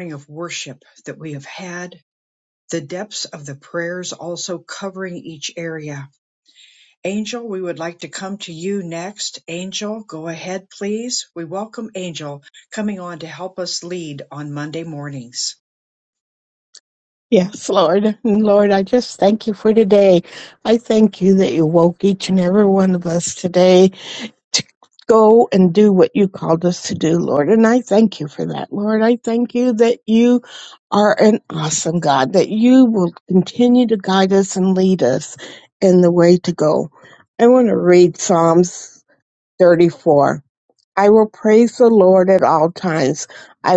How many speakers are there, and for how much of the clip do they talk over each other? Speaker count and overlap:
two, no overlap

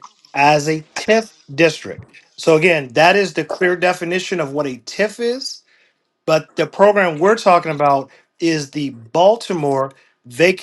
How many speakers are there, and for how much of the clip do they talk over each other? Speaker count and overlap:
one, no overlap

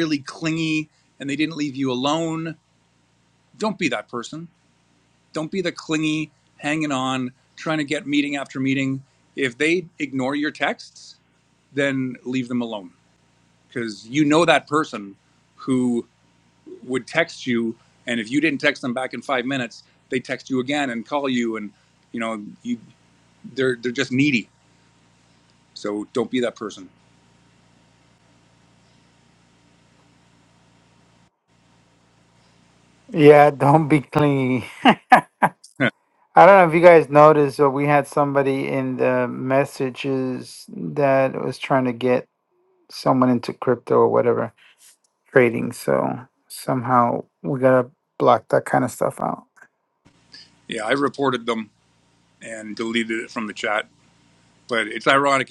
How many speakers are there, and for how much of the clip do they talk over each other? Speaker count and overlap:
two, no overlap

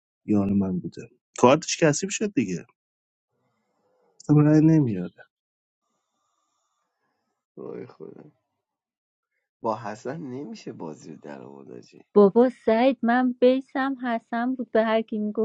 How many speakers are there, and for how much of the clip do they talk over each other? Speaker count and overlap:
three, no overlap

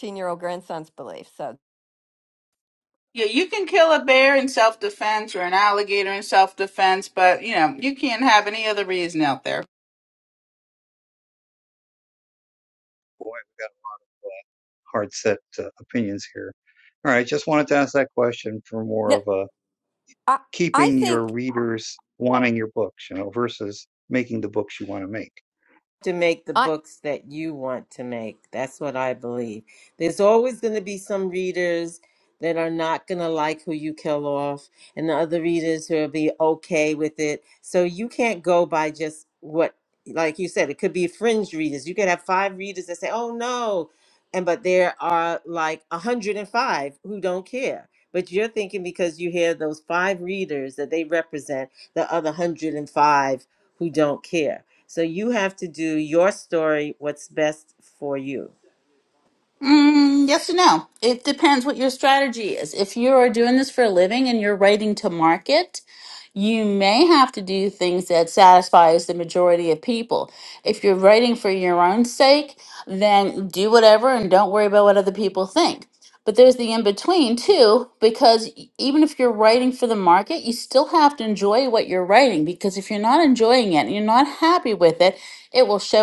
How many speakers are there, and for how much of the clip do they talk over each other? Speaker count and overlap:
four, about 1%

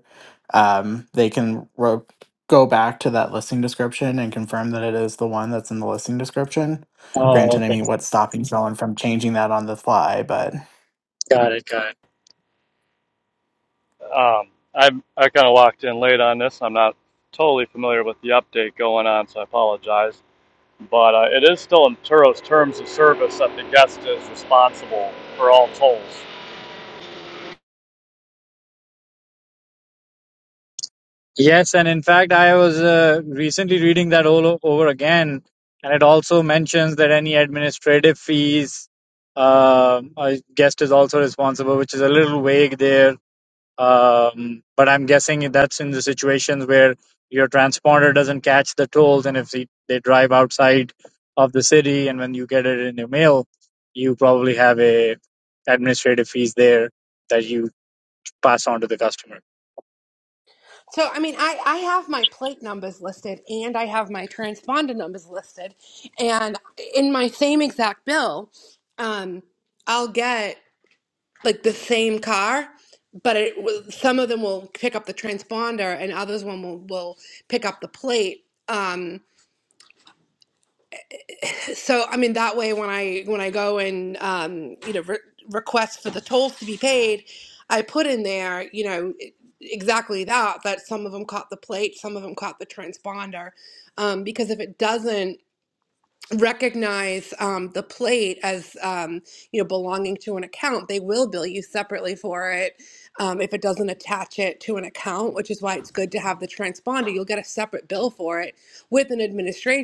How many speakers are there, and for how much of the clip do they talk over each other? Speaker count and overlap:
four, under 1%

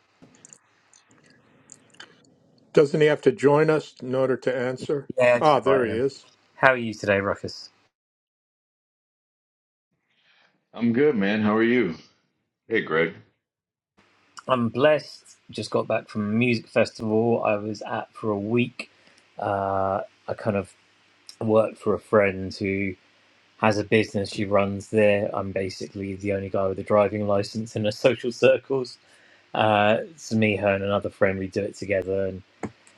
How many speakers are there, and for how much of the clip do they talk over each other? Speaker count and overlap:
three, about 2%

